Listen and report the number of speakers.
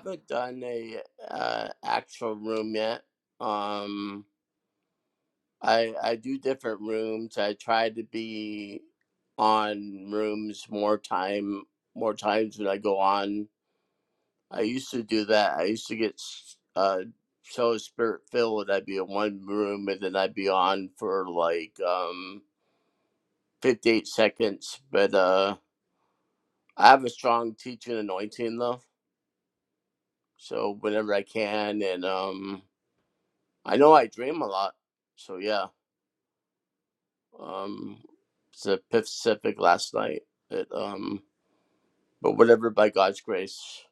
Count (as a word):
one